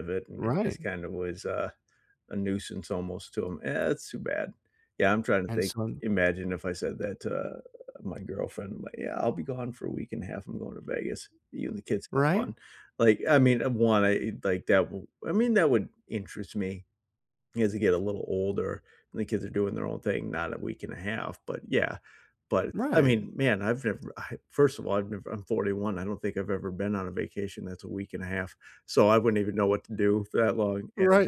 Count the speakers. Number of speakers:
2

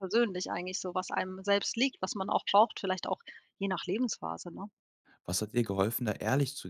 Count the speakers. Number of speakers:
2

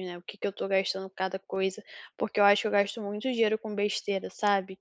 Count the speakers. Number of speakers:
1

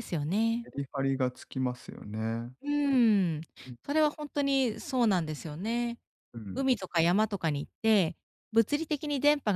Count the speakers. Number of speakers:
2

